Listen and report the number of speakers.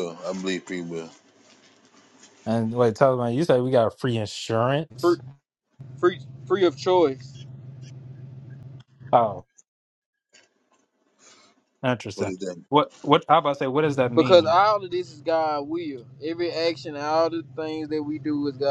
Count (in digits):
3